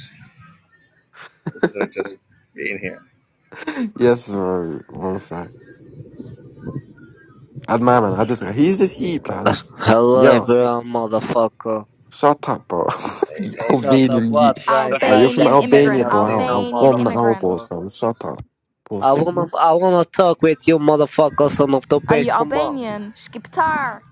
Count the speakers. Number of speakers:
4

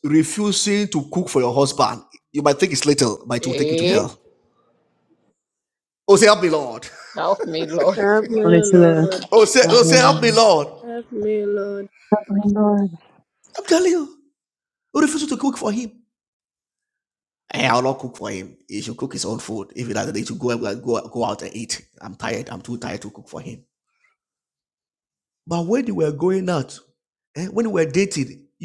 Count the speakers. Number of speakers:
4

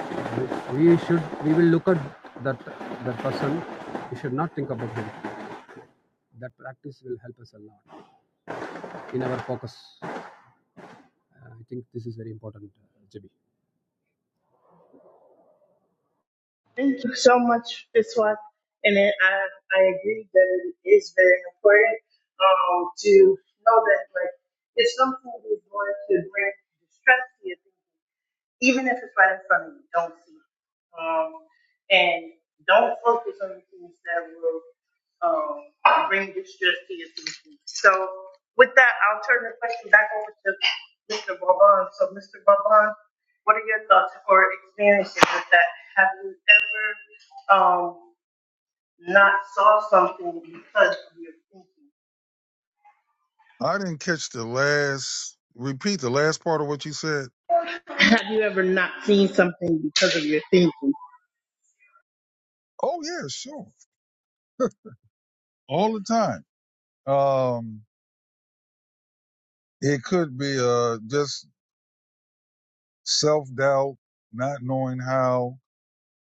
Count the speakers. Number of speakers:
3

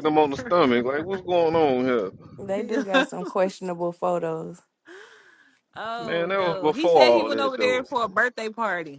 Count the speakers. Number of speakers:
3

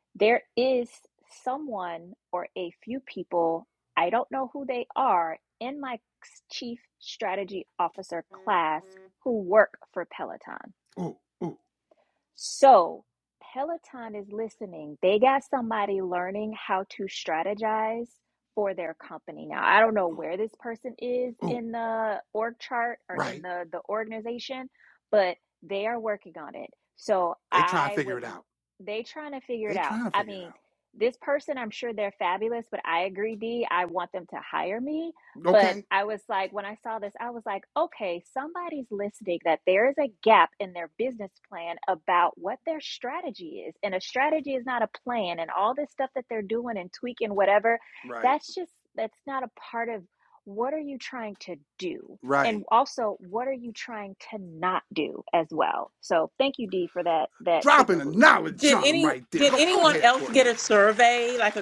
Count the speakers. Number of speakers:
3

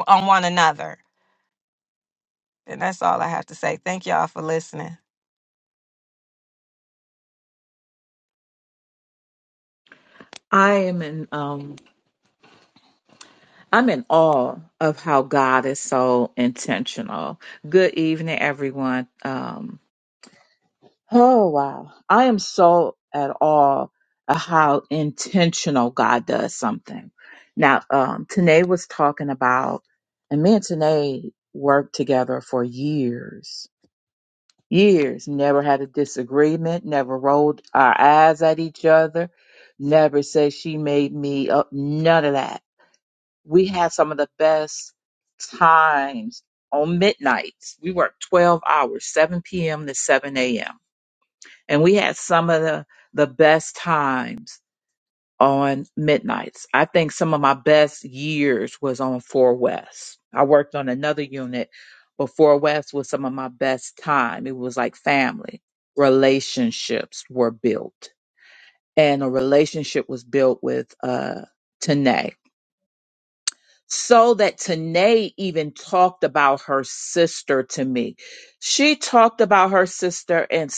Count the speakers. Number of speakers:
2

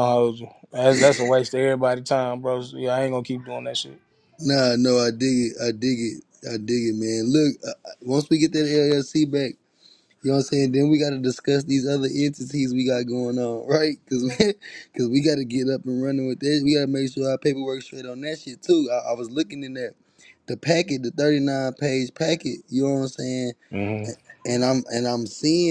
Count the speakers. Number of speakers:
2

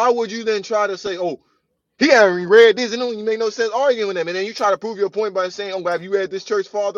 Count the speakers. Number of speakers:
1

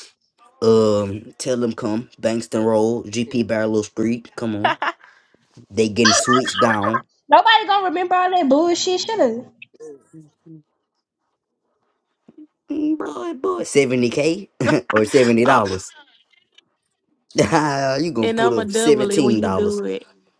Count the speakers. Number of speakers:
3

